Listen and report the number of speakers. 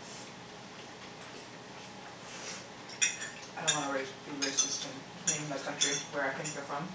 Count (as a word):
one